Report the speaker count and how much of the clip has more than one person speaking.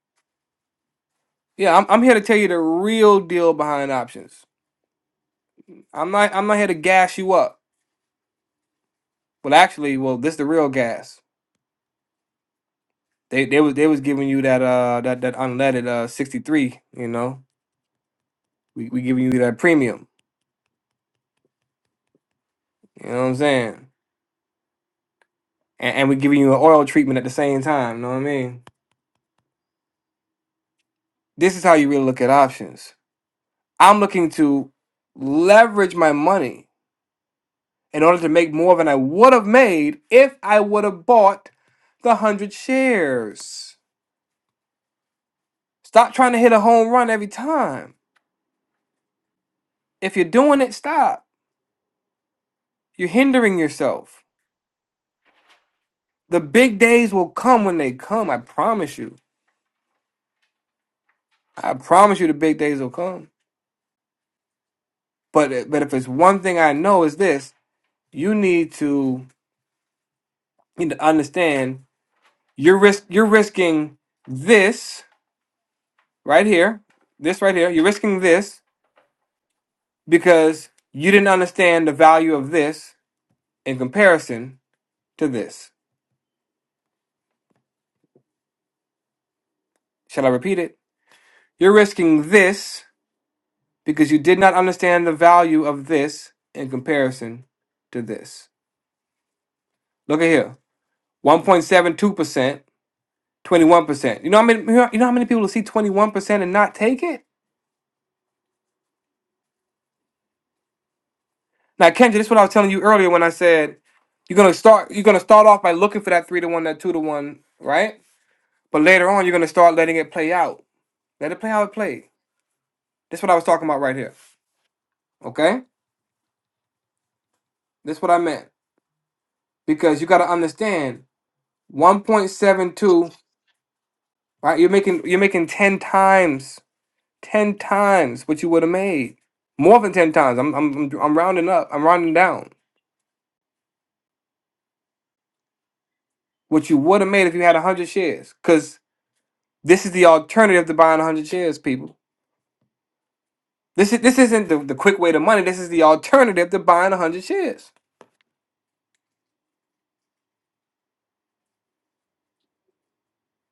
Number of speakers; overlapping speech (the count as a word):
one, no overlap